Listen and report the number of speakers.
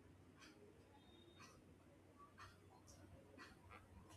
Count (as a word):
zero